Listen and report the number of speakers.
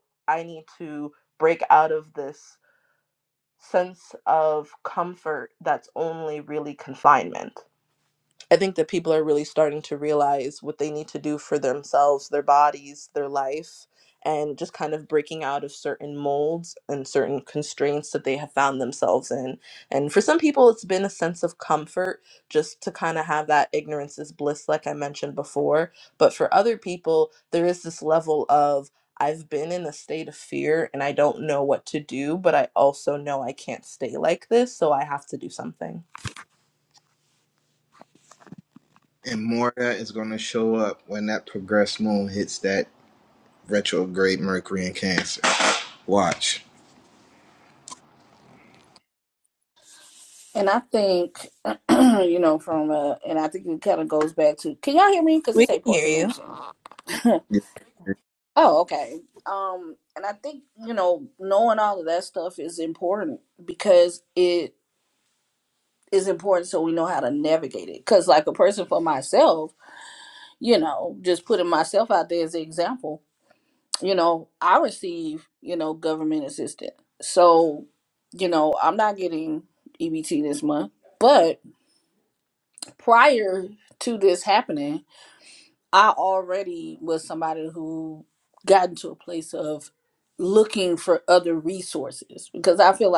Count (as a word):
three